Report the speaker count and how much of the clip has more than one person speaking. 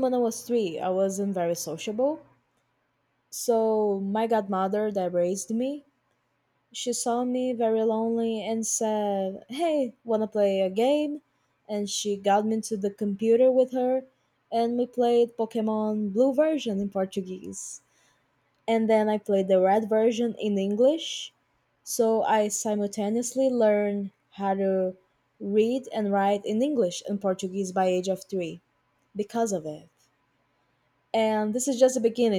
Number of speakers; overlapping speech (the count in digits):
1, no overlap